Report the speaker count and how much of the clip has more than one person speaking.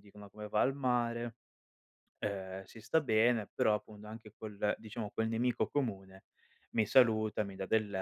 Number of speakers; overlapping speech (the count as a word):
one, no overlap